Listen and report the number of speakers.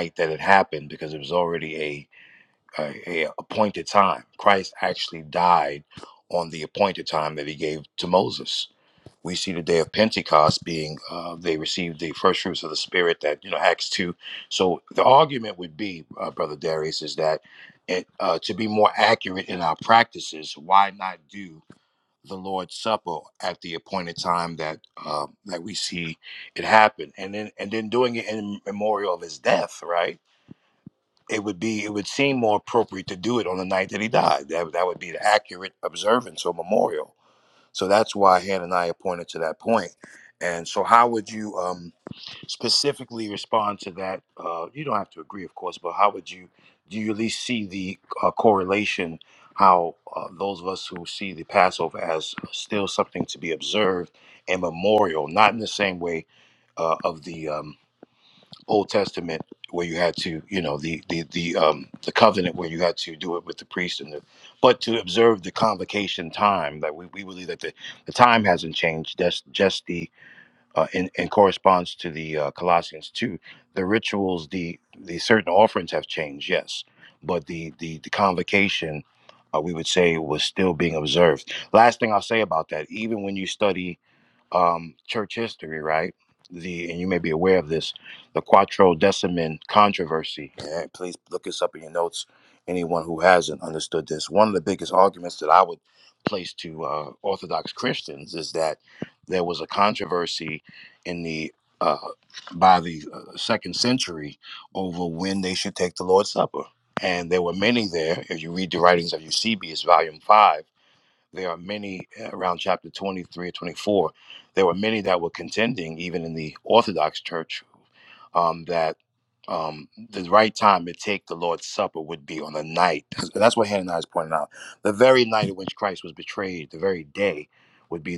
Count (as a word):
one